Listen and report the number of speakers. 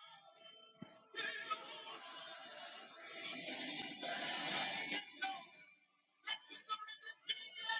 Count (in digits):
0